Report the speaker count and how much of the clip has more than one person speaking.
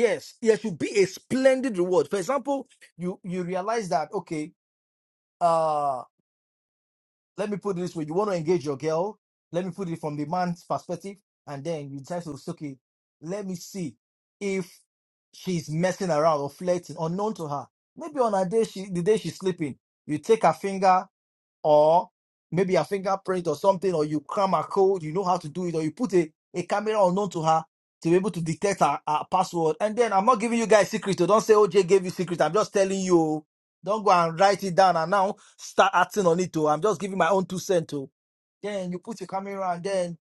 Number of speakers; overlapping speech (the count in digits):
1, no overlap